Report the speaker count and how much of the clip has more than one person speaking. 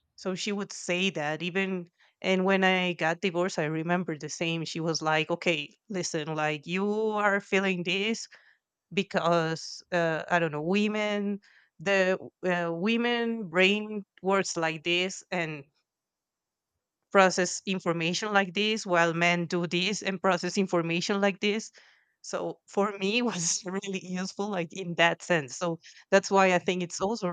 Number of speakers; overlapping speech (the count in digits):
1, no overlap